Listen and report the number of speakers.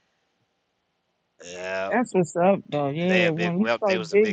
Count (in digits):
2